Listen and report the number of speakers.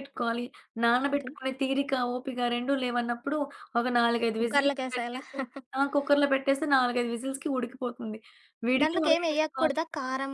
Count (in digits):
2